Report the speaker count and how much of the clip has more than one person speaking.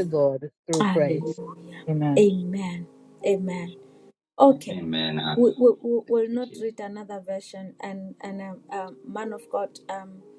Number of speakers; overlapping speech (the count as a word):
three, about 15%